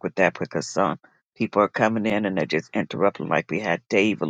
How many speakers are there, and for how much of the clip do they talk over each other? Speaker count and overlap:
1, no overlap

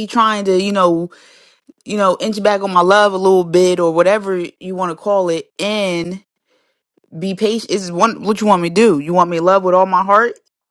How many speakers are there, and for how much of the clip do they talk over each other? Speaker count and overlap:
1, no overlap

